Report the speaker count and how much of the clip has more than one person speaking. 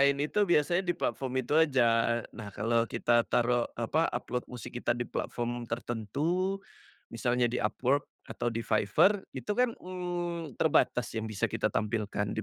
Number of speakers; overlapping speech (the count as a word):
one, no overlap